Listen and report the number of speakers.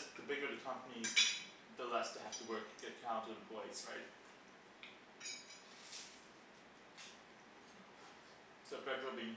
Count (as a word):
one